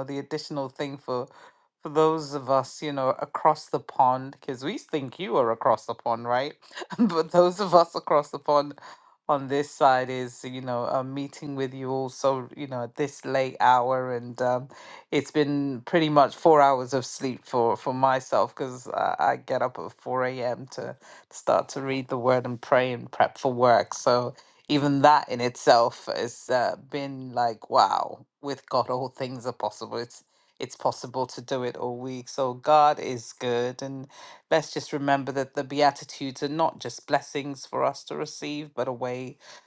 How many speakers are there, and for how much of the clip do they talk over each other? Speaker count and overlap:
1, no overlap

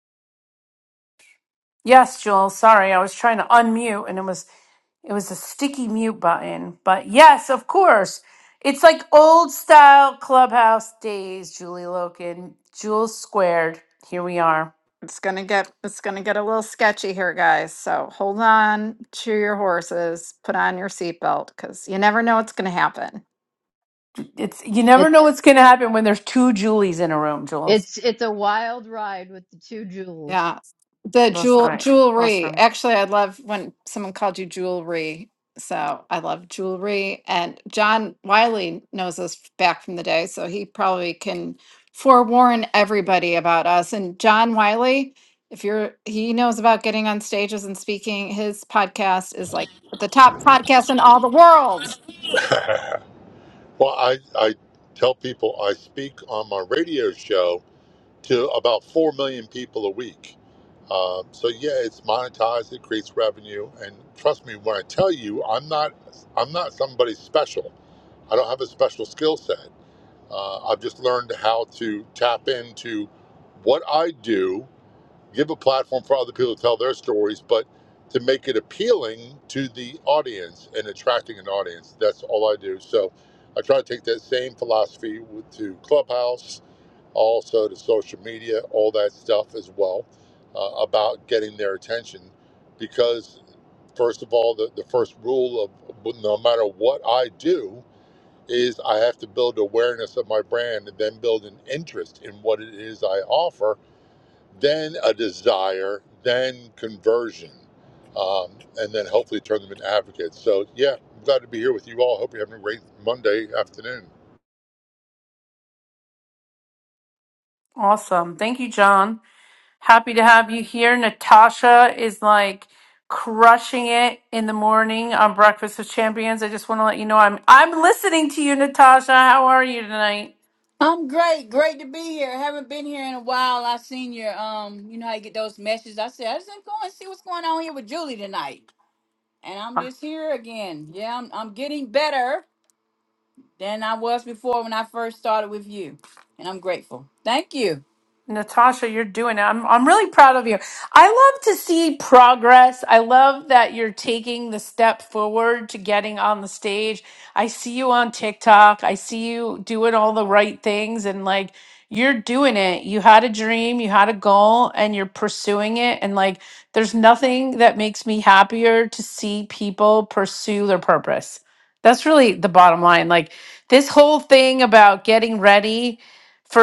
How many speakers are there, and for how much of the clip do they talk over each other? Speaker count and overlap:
5, about 1%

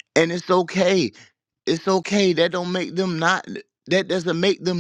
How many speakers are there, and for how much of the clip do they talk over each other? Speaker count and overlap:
1, no overlap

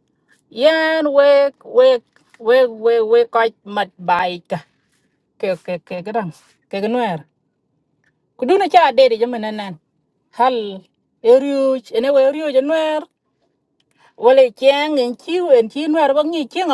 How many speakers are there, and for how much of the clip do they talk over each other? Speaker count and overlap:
1, no overlap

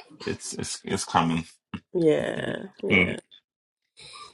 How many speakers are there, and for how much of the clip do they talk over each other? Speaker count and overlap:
2, about 6%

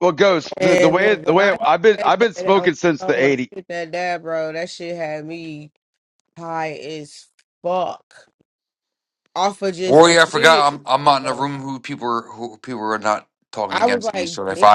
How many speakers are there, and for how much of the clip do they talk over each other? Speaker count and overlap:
3, about 32%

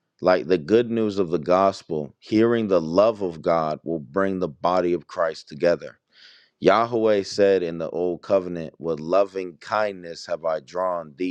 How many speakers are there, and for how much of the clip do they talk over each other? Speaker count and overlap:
1, no overlap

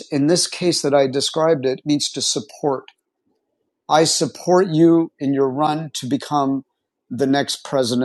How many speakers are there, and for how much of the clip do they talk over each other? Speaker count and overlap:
1, no overlap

